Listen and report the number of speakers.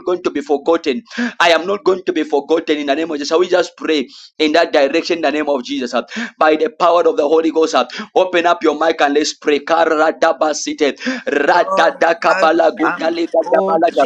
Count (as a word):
two